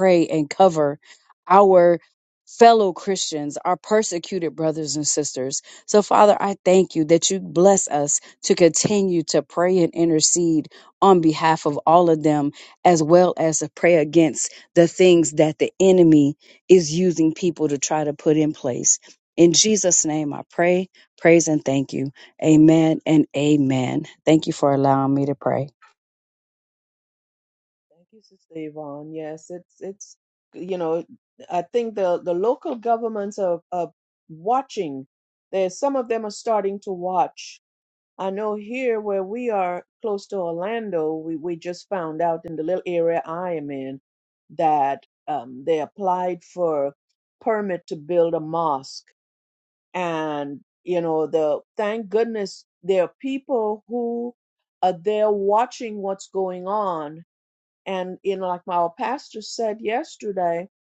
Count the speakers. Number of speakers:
2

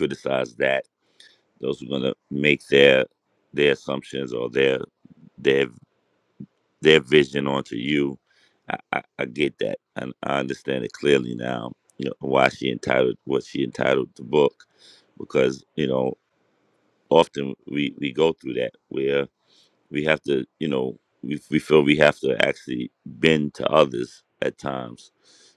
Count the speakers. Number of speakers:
1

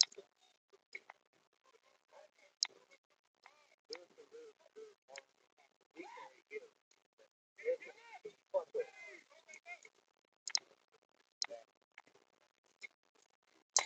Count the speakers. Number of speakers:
0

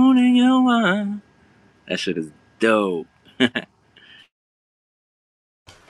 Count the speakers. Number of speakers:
1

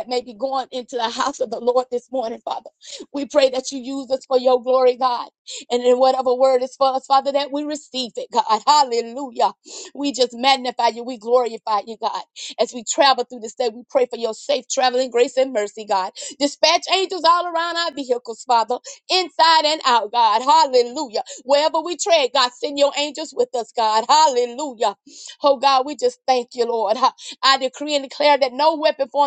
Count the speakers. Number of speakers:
1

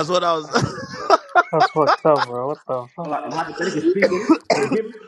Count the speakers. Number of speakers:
3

